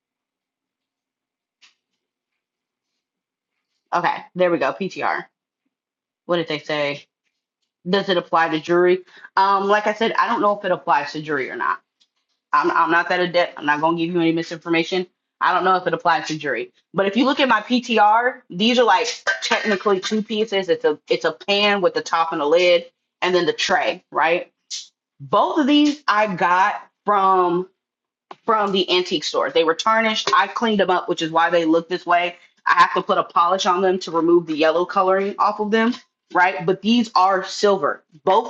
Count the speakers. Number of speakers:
one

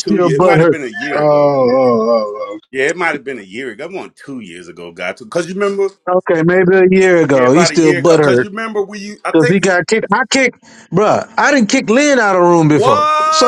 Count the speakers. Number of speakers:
three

